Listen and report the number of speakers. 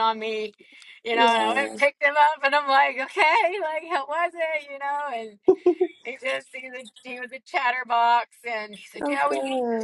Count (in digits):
2